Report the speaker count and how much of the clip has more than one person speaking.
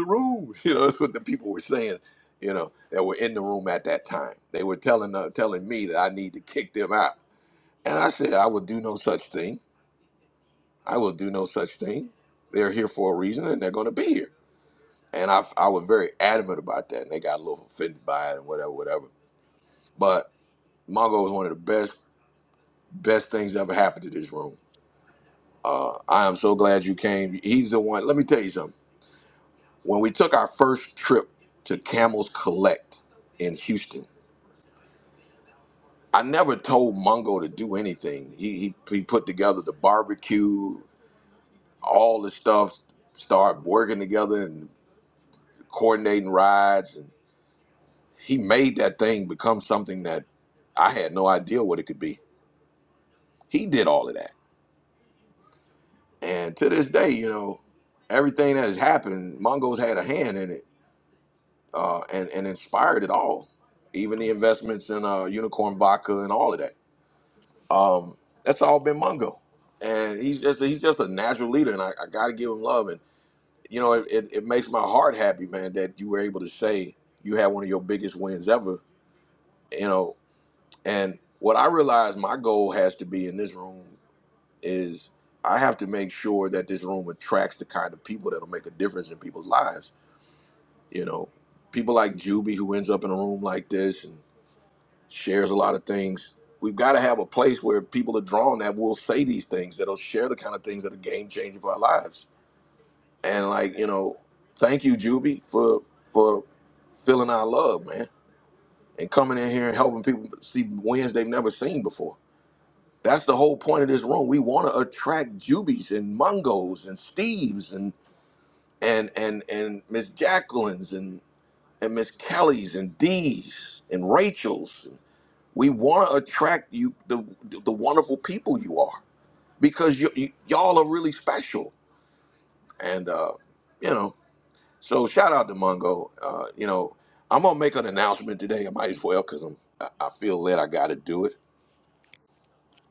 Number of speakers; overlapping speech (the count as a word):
one, no overlap